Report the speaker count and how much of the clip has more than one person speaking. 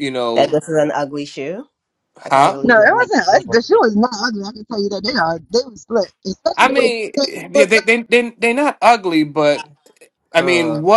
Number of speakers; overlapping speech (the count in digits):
3, about 29%